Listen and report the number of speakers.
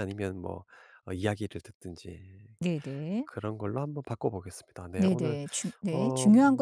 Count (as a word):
two